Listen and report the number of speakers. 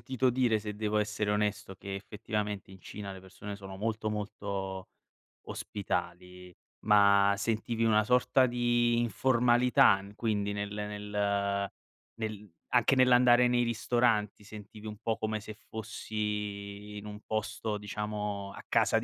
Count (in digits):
1